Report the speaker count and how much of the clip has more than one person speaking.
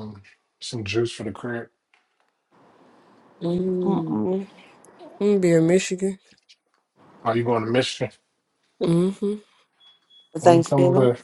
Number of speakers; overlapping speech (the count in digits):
3, about 9%